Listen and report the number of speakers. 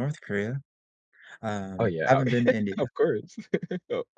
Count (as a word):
two